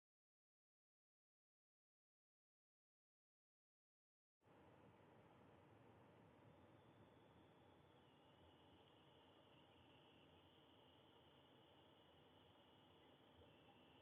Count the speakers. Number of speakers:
zero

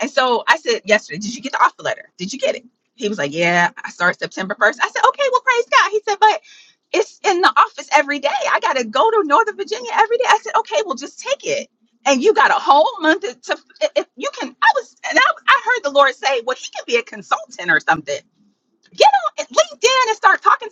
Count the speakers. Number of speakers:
one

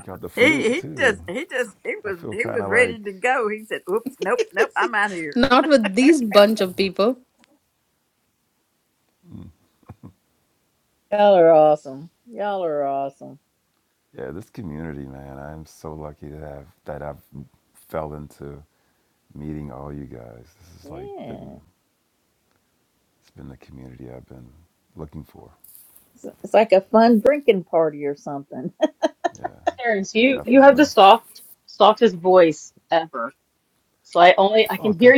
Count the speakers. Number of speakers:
four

